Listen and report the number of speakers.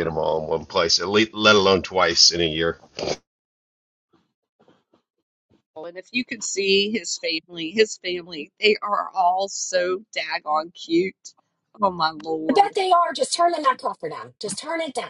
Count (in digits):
3